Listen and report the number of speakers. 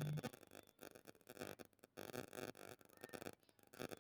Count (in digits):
0